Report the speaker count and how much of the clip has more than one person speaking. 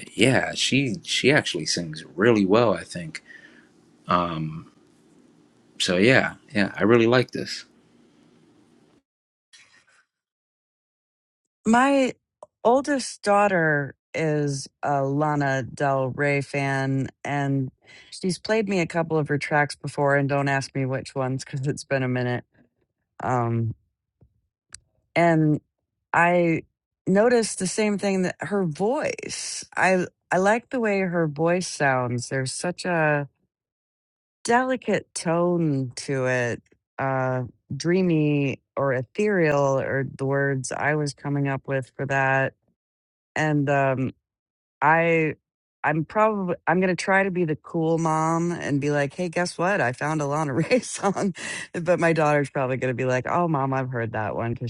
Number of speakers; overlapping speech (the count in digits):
2, no overlap